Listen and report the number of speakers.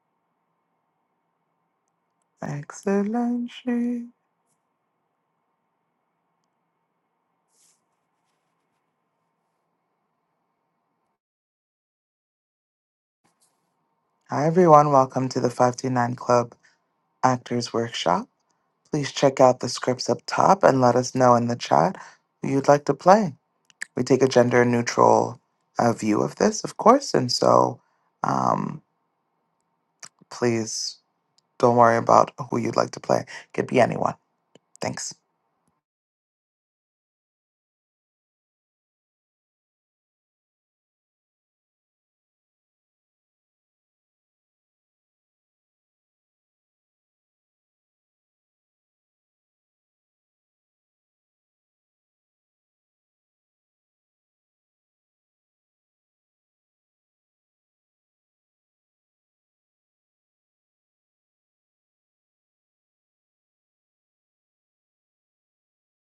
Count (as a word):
one